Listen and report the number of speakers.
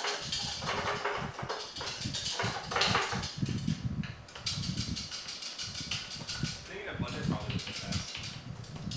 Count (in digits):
1